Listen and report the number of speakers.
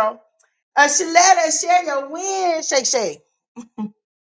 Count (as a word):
one